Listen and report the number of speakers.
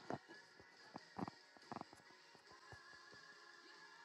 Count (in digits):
0